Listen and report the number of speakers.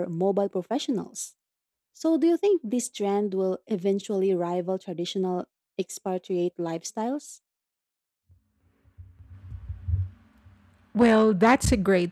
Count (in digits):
2